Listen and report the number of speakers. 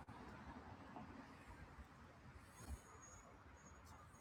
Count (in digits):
0